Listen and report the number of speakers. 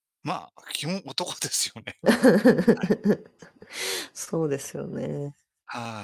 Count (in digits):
2